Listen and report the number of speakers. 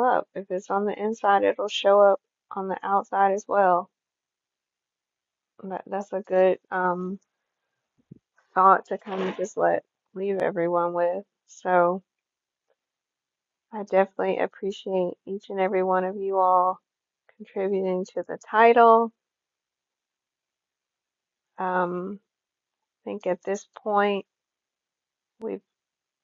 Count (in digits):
1